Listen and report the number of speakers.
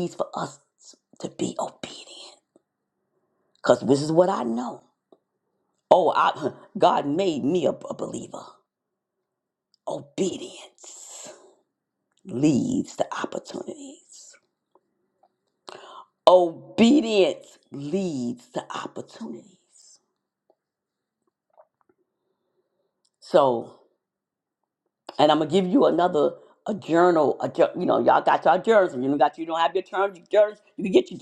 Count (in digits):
1